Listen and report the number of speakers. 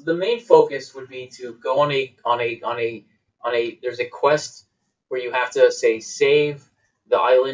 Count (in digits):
1